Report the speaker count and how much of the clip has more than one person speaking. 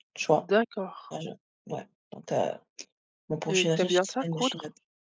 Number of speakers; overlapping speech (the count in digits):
2, about 24%